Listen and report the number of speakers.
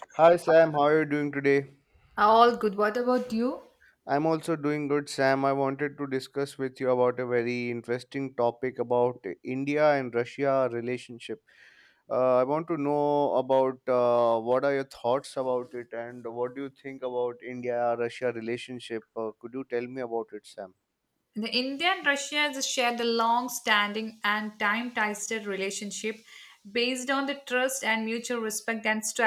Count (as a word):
two